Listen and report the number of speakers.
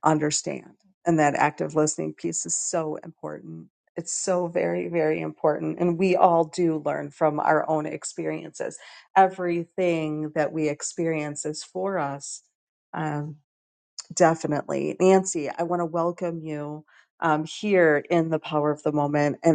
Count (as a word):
one